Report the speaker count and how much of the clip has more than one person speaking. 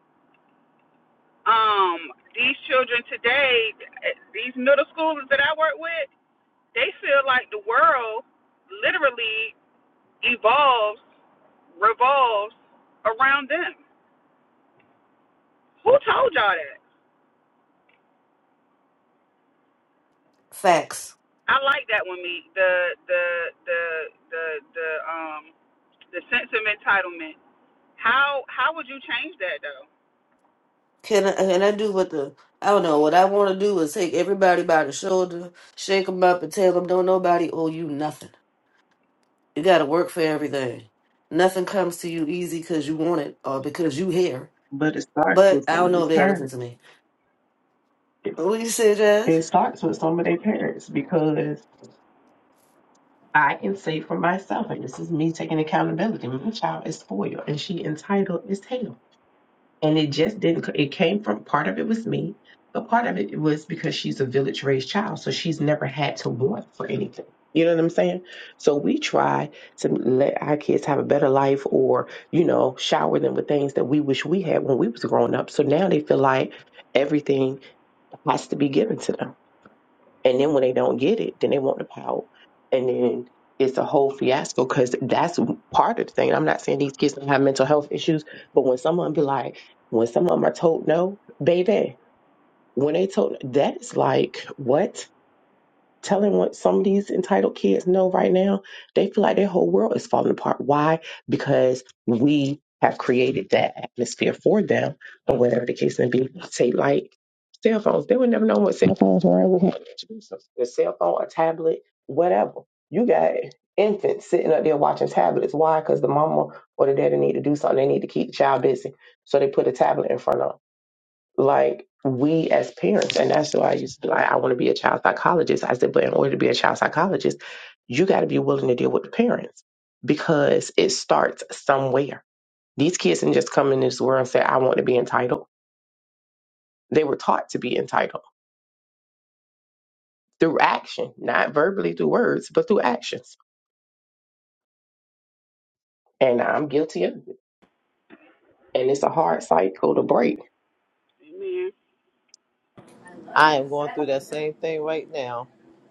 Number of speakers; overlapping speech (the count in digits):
4, about 1%